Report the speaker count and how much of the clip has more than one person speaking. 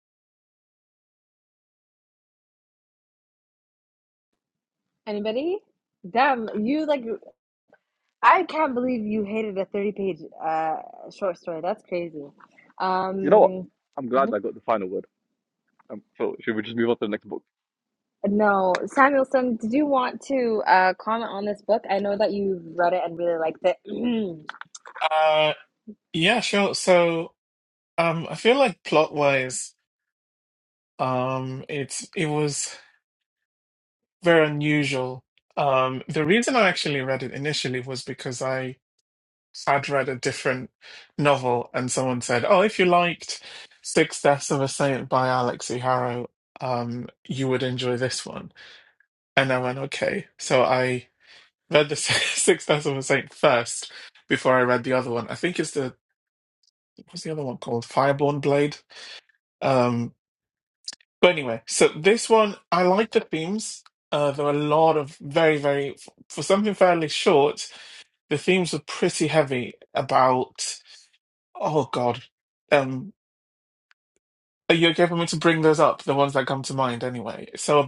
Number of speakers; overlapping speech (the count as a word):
three, about 1%